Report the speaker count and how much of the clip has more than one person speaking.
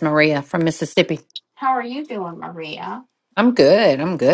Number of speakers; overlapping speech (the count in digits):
2, no overlap